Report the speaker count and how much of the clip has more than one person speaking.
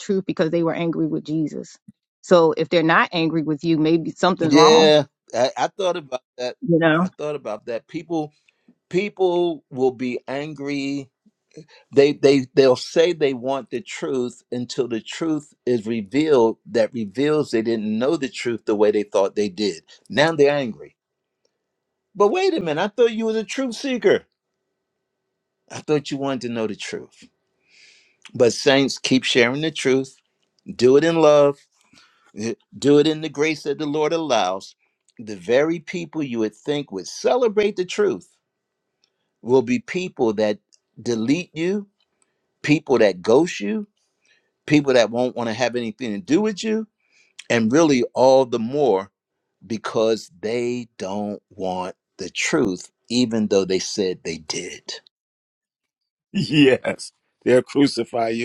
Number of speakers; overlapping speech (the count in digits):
3, about 1%